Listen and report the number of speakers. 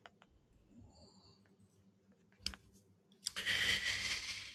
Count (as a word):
zero